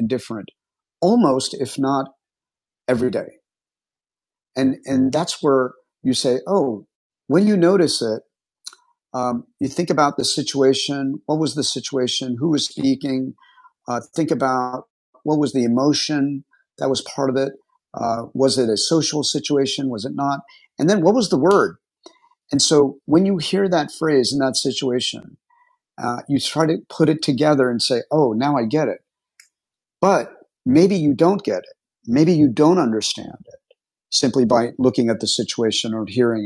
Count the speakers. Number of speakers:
1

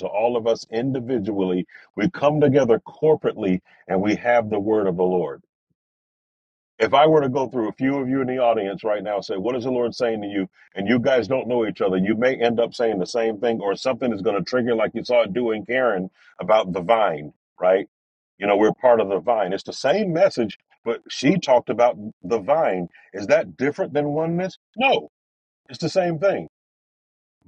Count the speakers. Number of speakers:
1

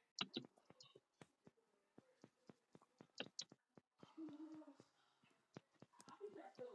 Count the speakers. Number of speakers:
0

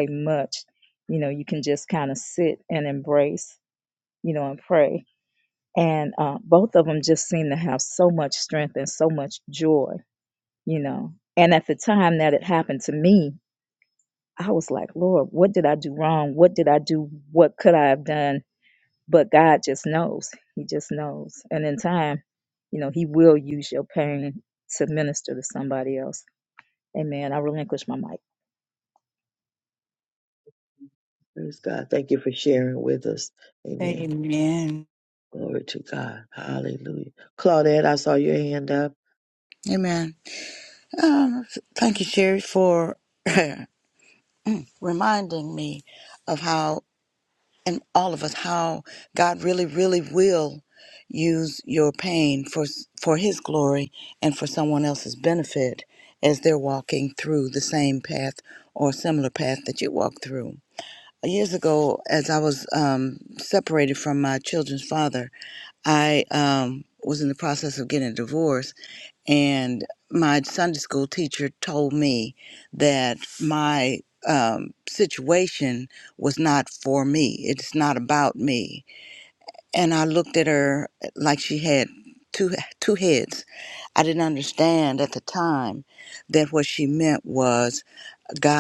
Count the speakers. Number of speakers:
4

